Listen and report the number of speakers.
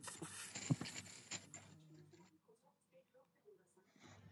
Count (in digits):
0